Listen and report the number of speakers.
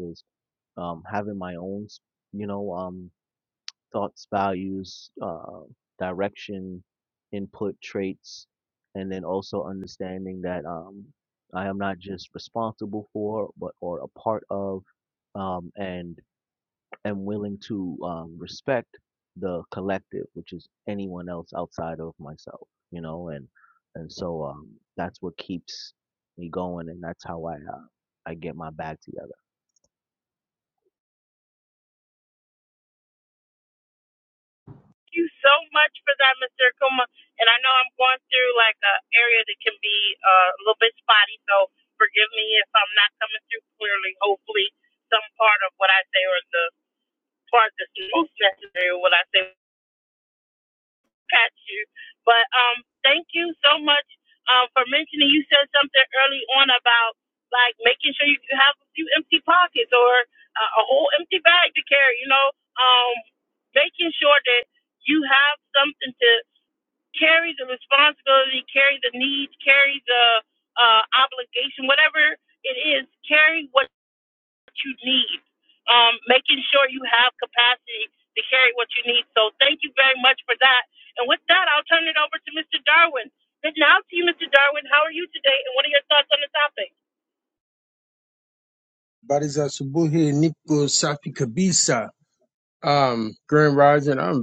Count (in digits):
3